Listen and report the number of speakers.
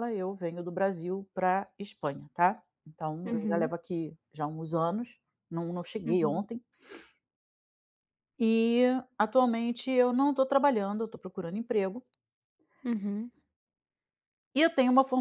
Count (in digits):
2